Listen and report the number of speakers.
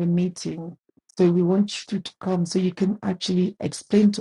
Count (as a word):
one